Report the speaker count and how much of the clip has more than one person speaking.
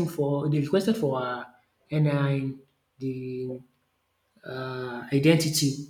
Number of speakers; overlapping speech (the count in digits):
1, no overlap